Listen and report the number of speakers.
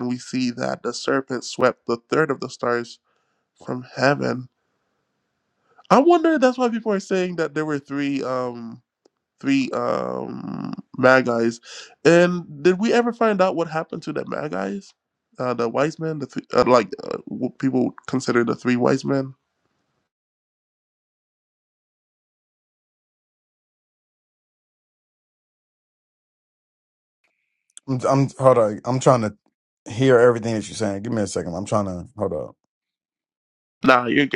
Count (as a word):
two